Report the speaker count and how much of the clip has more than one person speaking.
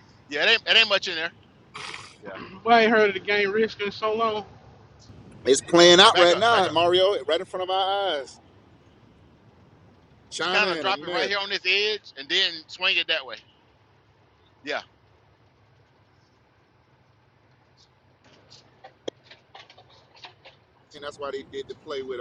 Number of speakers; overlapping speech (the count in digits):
3, about 7%